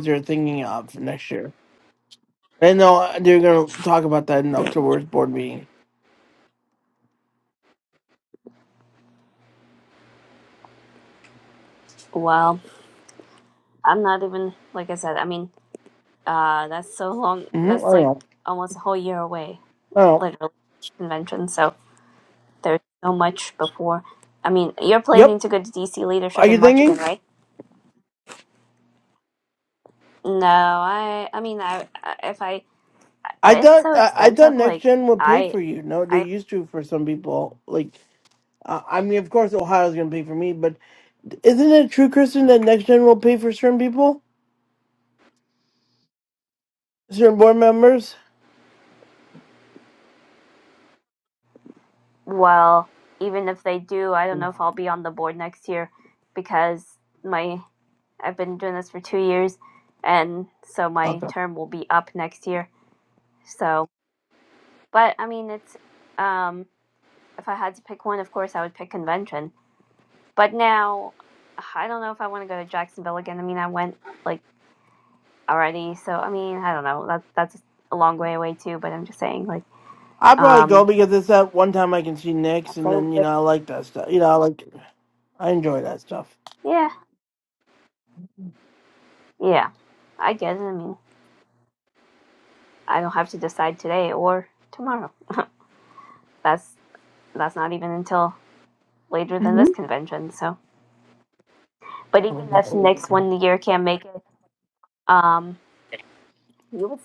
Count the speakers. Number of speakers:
2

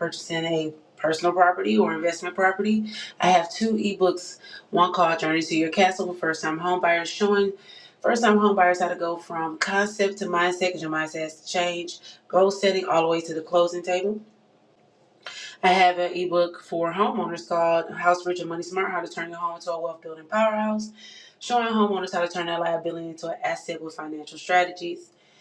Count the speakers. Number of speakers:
1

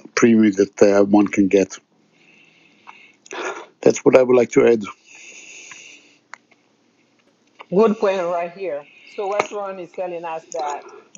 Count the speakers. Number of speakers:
2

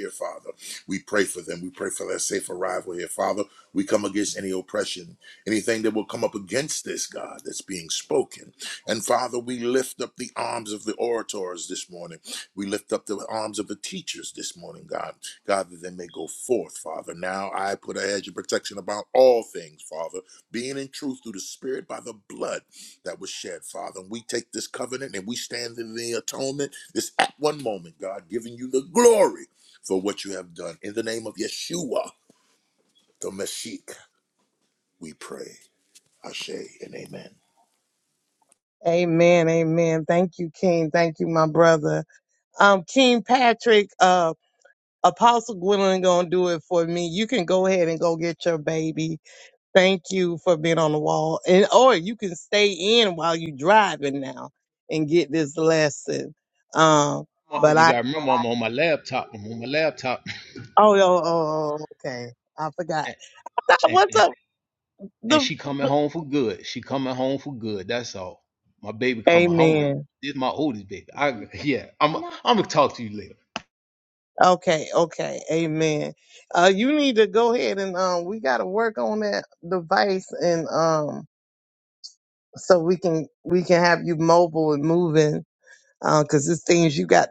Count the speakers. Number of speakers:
3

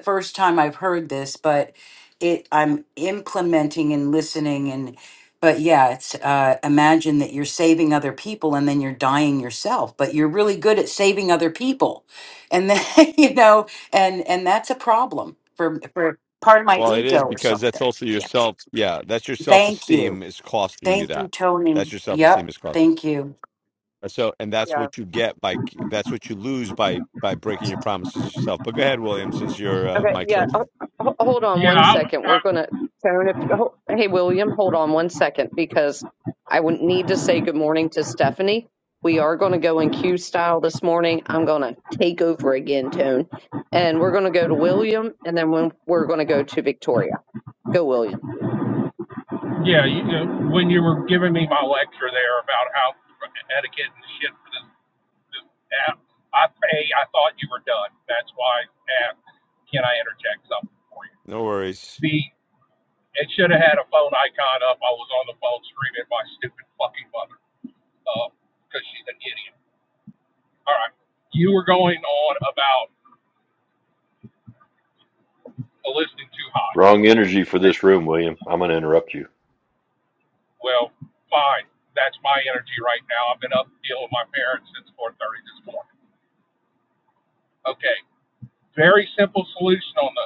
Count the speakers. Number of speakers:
5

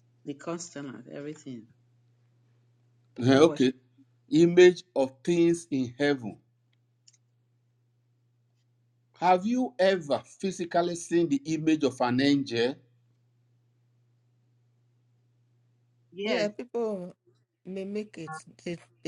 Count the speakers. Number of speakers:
3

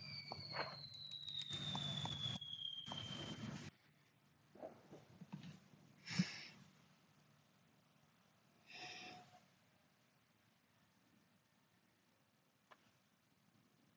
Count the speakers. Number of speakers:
0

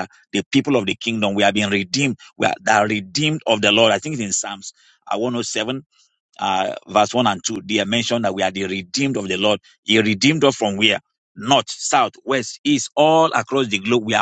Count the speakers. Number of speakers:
1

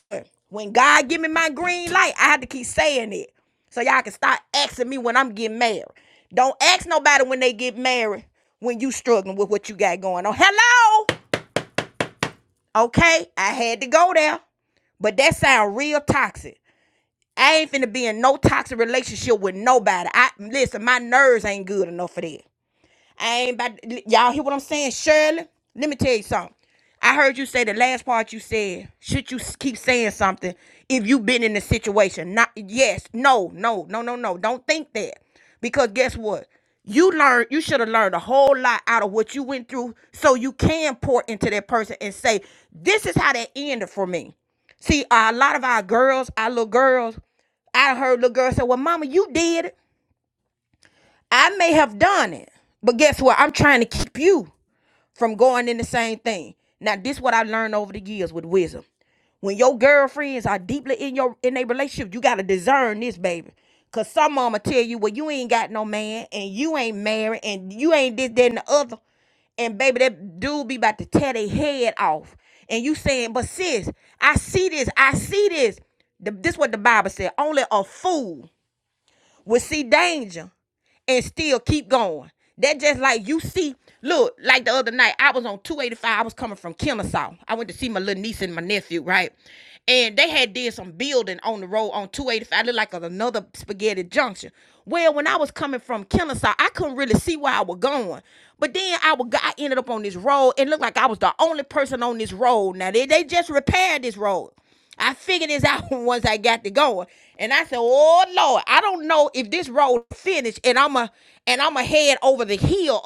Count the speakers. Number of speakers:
1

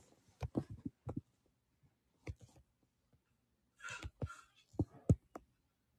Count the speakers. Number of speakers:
0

